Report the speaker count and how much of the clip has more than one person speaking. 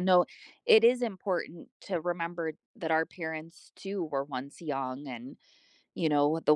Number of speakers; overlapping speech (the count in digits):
1, no overlap